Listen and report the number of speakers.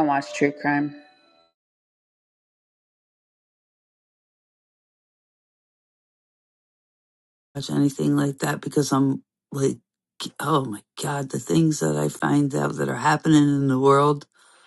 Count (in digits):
2